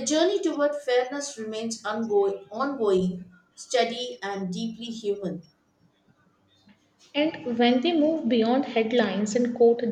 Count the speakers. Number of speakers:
two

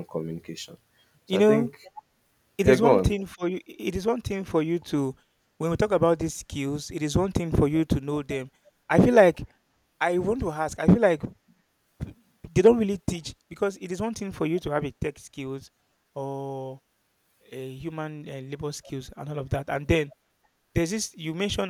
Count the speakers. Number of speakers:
two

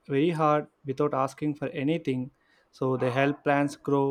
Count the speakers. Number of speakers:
one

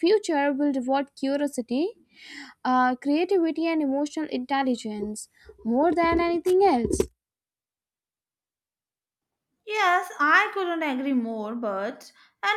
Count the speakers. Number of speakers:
two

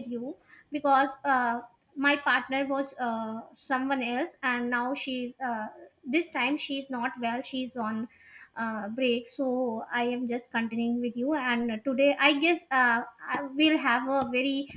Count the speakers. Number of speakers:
one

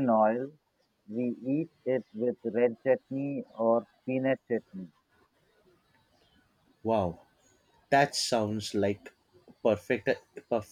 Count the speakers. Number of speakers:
two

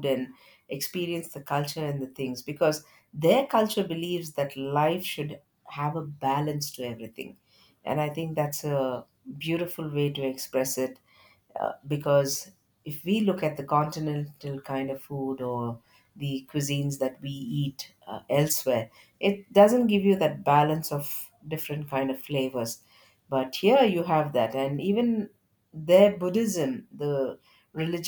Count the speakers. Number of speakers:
one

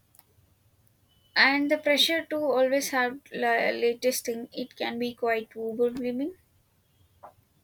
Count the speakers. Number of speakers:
one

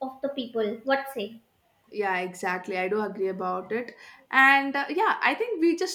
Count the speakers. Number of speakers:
two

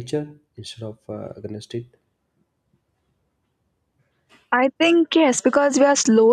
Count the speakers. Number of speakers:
two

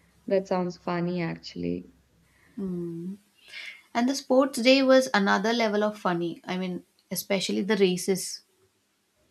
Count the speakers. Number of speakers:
two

